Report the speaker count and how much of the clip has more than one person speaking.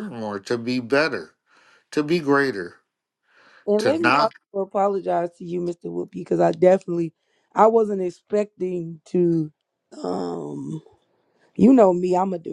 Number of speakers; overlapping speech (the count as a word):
two, about 5%